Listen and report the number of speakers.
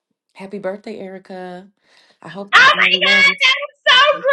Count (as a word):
two